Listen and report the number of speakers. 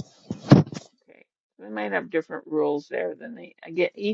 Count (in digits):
1